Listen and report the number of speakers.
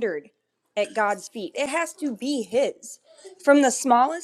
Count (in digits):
1